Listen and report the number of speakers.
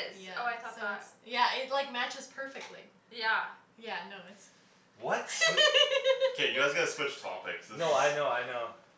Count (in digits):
4